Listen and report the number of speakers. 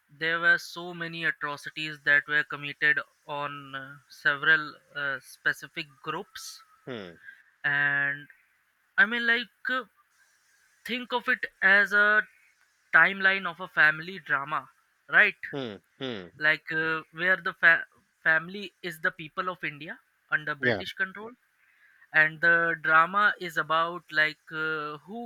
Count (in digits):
2